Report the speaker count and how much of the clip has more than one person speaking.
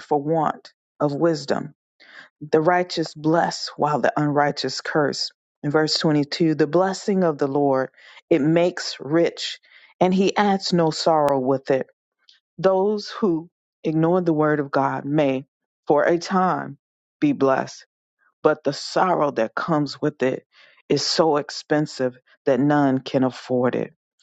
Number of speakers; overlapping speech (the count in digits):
1, no overlap